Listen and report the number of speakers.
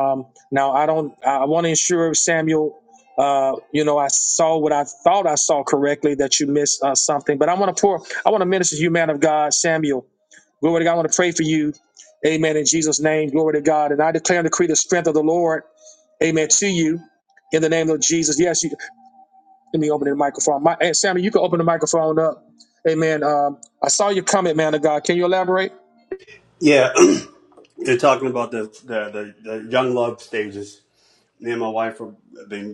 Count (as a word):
two